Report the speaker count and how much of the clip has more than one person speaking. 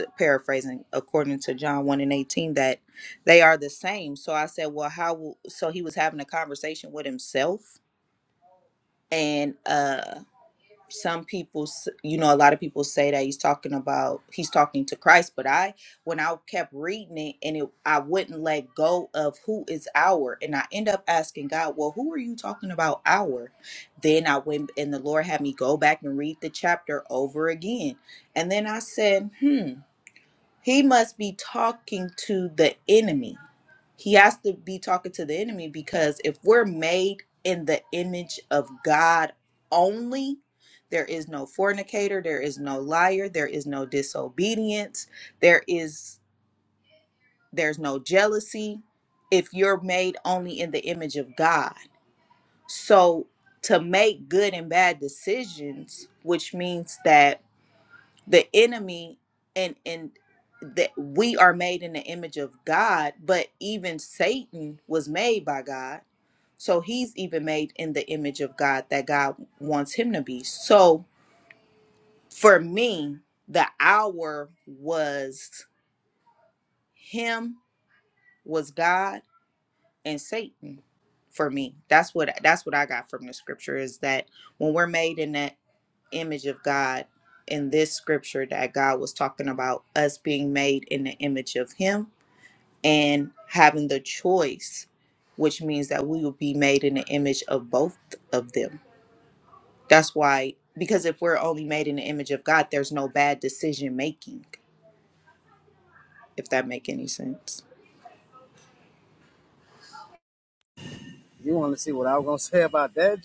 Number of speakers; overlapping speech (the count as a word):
two, no overlap